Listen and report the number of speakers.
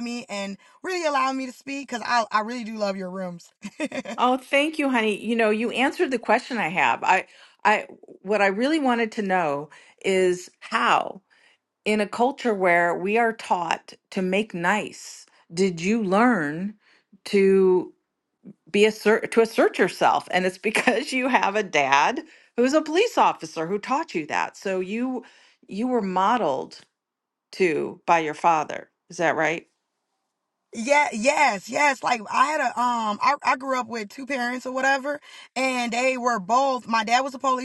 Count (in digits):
2